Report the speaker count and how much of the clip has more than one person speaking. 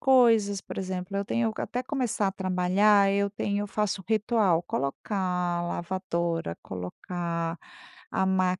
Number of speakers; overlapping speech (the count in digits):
1, no overlap